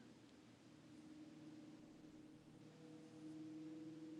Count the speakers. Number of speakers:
0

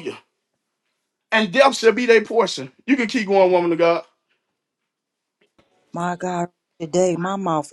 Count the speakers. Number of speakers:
2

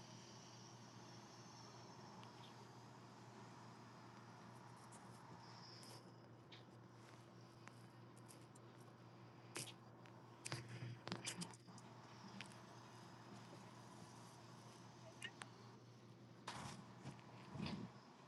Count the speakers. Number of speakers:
0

